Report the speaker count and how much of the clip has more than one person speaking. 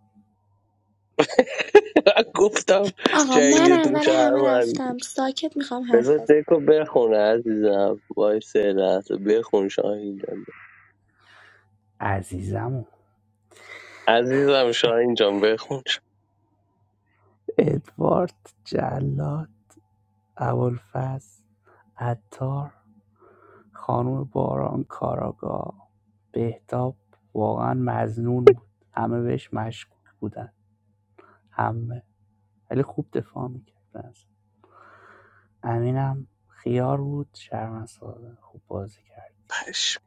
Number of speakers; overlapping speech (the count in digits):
3, about 3%